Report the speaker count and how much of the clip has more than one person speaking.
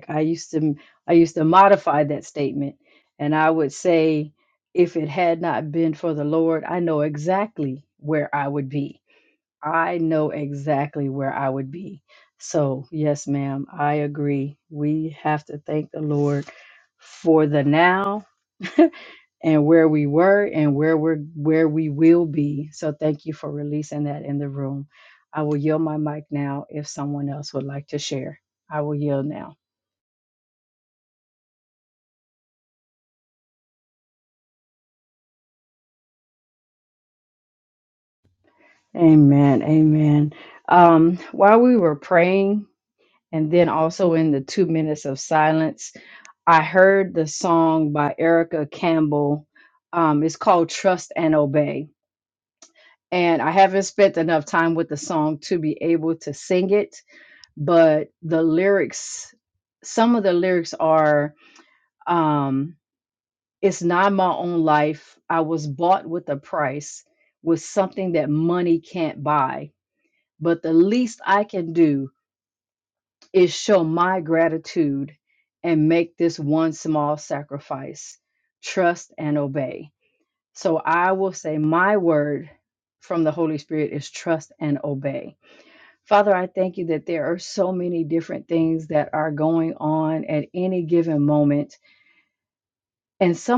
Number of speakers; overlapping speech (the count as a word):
one, no overlap